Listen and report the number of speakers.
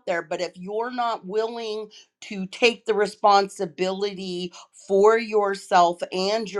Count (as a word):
one